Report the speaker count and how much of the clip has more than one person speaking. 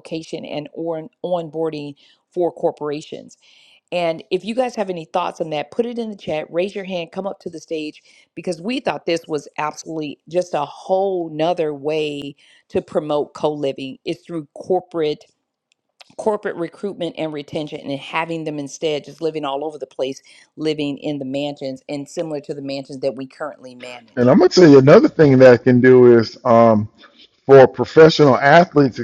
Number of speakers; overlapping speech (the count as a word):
two, under 1%